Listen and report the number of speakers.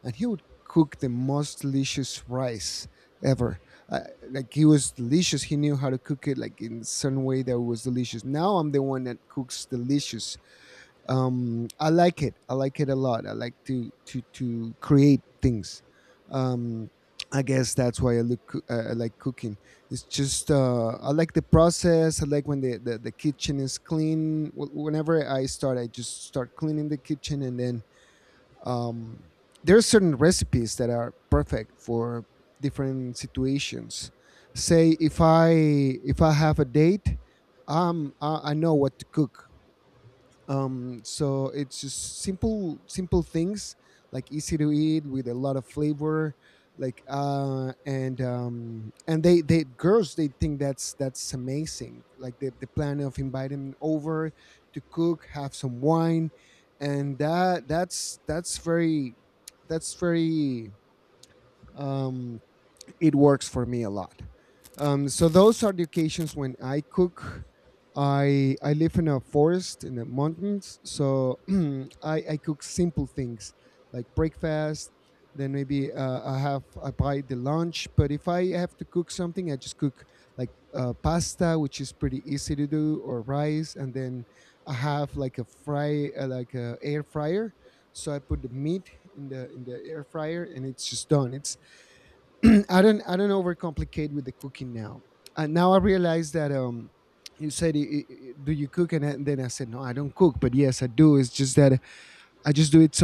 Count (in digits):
1